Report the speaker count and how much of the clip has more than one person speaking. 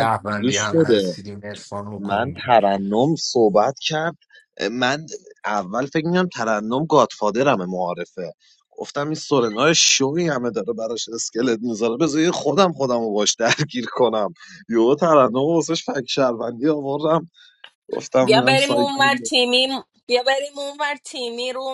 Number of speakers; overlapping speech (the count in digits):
3, about 11%